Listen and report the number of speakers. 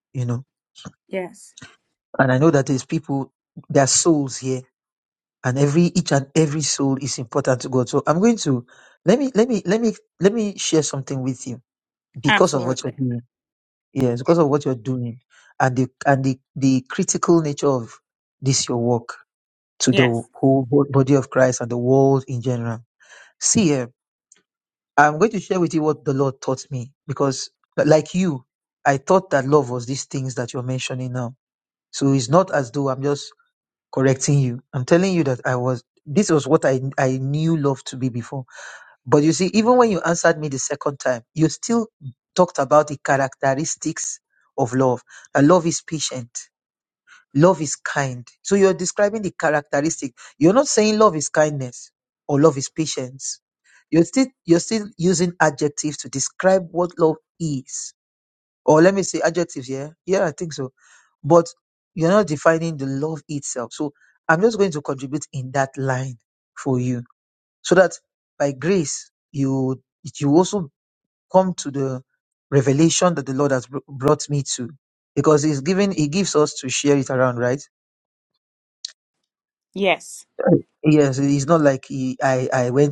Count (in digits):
2